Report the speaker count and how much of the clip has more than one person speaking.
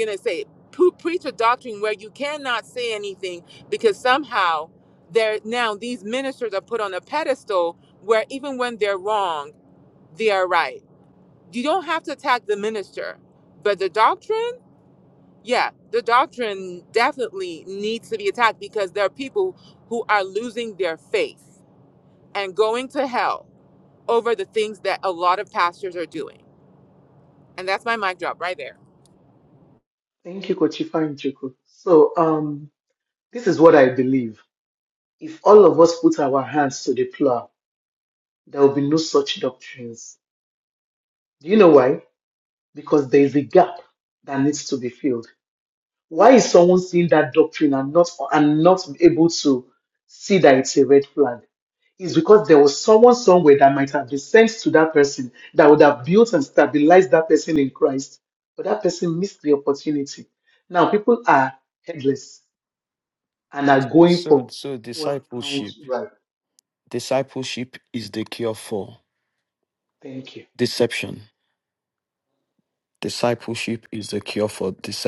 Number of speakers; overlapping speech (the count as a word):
three, about 2%